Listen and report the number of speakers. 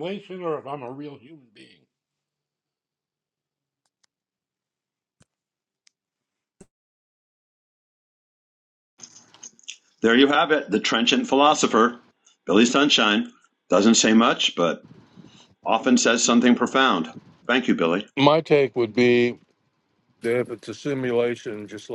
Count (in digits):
3